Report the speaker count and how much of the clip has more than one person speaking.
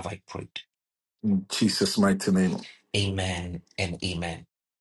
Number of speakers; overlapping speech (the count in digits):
2, no overlap